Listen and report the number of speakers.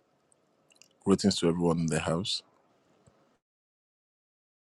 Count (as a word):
one